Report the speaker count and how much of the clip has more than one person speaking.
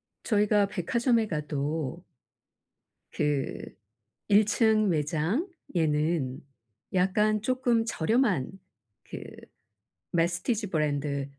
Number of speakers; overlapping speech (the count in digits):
1, no overlap